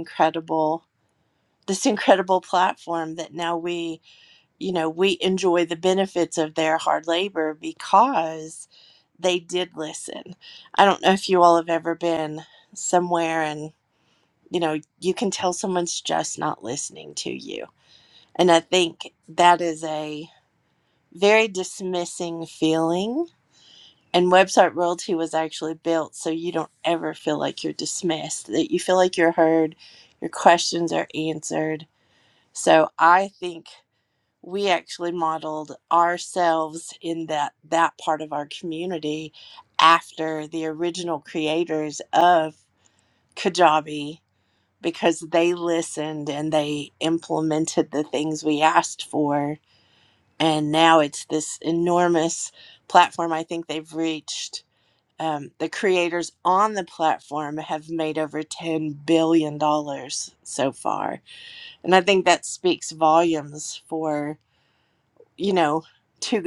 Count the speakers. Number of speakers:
1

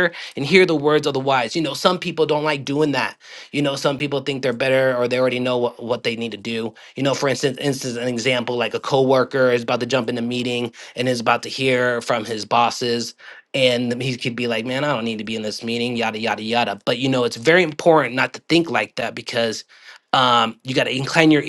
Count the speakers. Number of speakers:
1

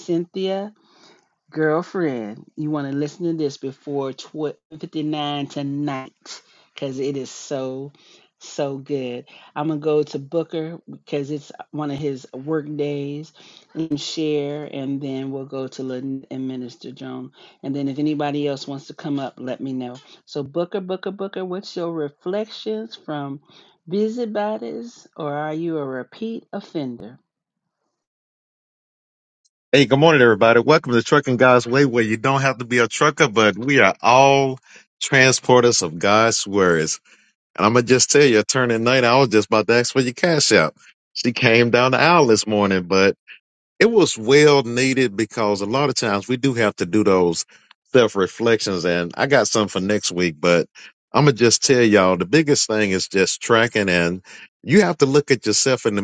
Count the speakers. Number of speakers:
2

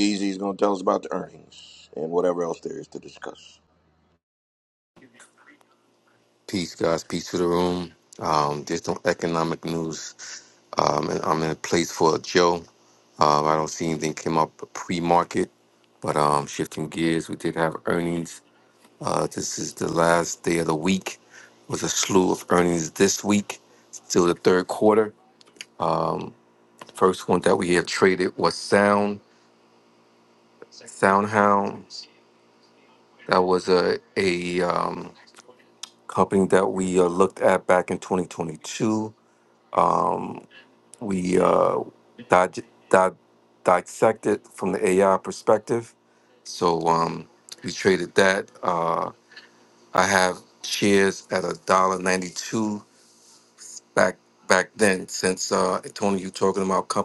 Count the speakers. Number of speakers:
2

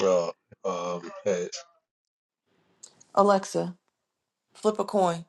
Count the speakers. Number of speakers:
2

